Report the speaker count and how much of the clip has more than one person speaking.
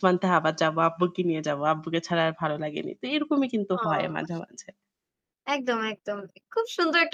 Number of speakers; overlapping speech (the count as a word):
two, about 7%